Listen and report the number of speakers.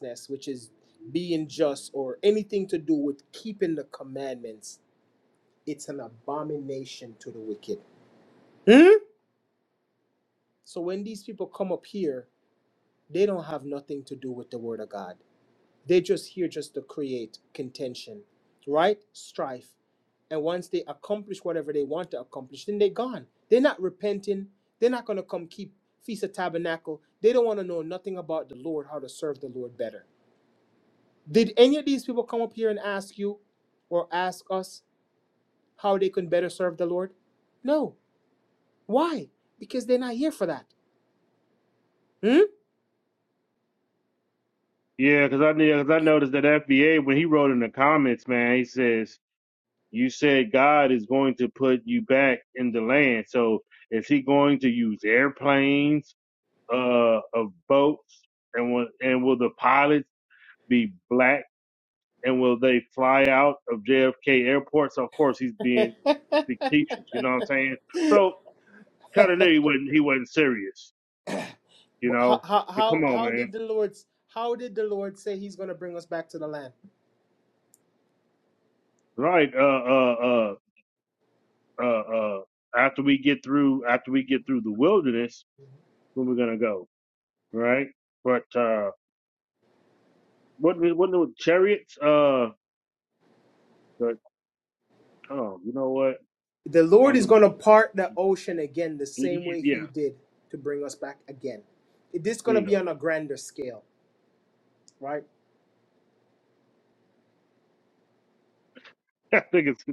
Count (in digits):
2